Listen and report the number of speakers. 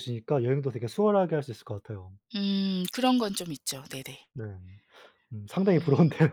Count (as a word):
two